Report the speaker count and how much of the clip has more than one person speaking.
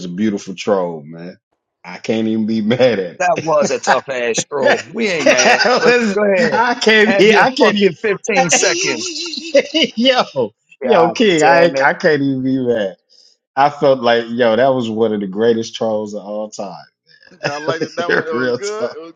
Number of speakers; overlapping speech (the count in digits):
3, about 22%